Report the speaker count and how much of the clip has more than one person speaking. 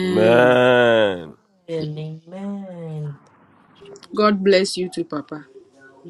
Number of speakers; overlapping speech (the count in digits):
3, about 8%